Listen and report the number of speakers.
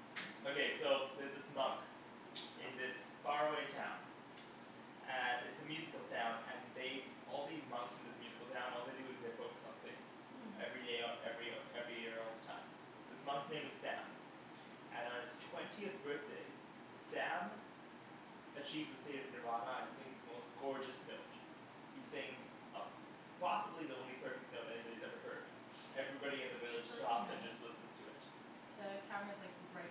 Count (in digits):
2